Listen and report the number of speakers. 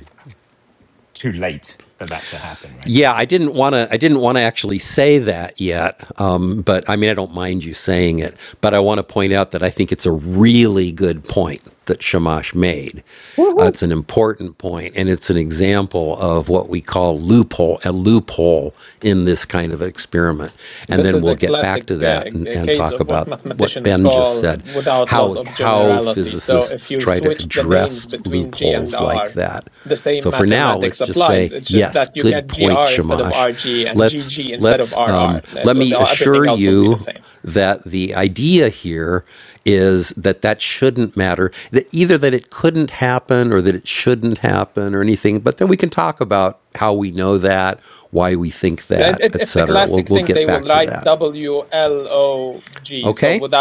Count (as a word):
three